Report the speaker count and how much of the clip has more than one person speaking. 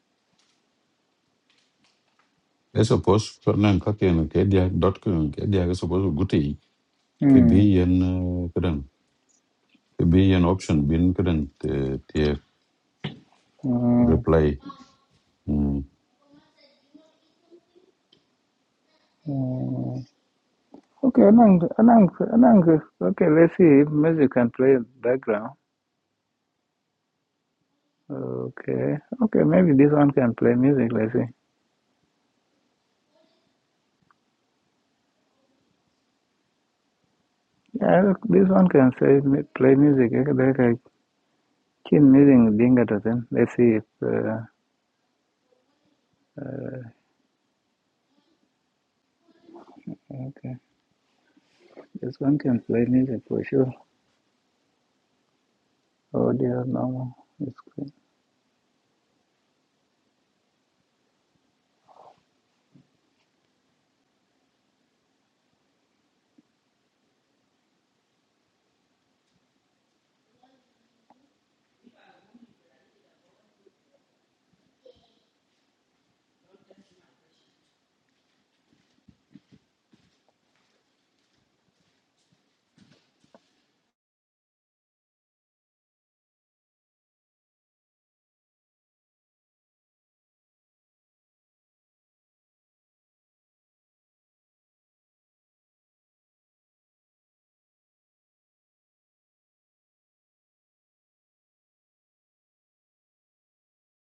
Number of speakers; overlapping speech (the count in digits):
2, under 1%